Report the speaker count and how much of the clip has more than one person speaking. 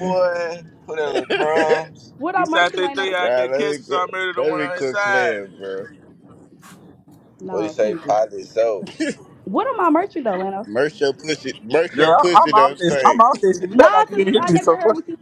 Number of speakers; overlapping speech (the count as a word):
four, about 41%